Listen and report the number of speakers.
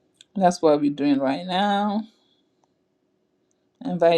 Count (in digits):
1